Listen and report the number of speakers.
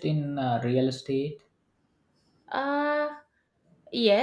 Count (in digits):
2